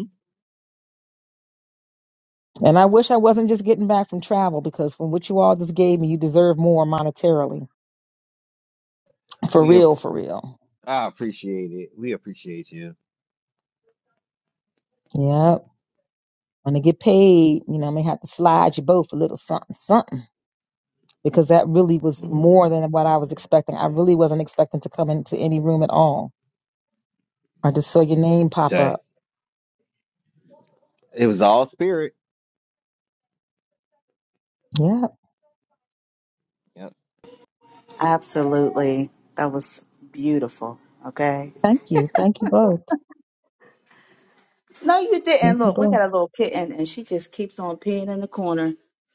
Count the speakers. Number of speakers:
3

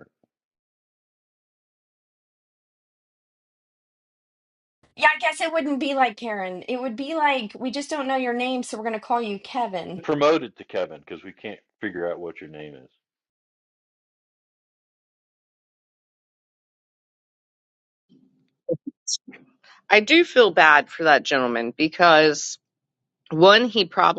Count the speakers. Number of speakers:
3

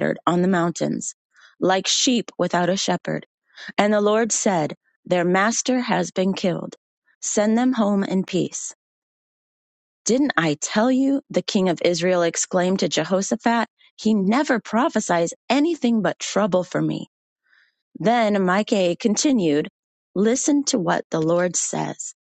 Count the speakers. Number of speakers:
1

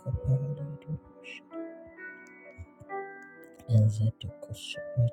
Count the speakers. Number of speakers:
0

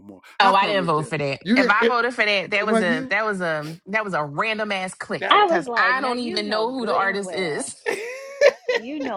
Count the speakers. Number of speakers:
3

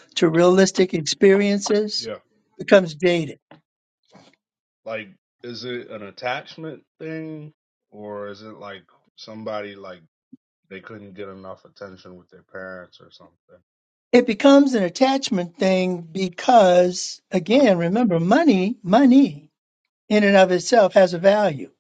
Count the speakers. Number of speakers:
2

